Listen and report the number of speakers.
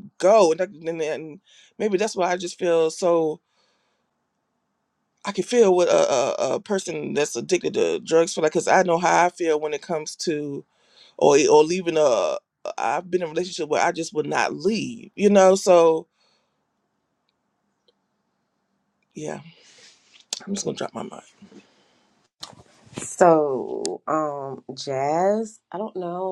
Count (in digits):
2